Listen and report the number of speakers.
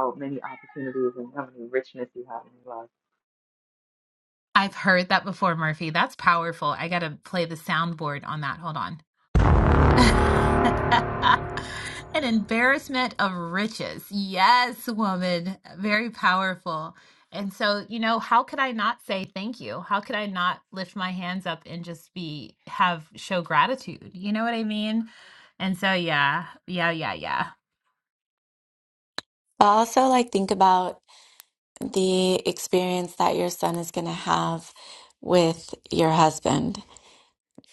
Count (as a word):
three